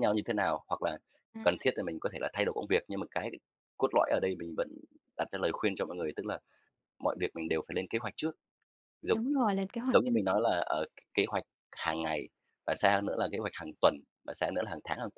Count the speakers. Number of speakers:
2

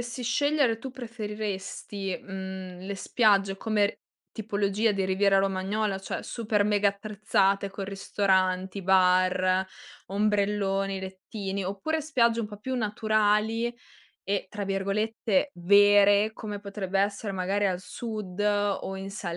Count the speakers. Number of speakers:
1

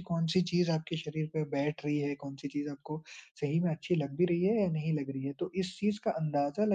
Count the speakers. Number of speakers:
1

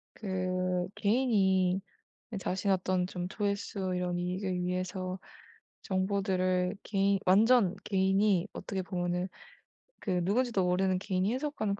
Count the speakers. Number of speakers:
1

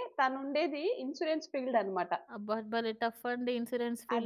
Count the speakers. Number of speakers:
2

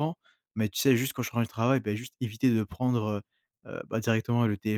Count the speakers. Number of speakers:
1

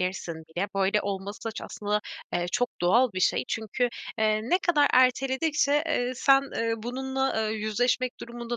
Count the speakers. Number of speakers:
1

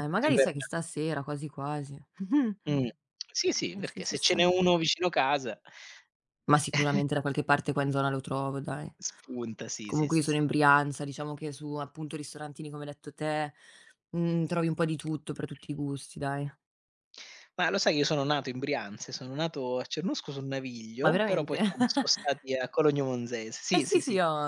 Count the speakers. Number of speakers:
2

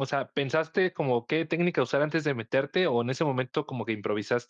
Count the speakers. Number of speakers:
1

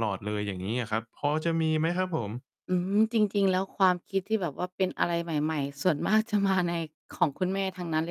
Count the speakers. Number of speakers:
2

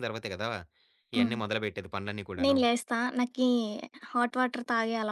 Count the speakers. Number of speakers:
2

